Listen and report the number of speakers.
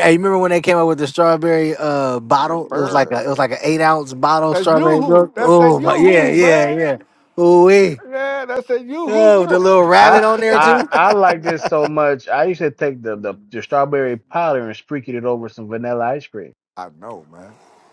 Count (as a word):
three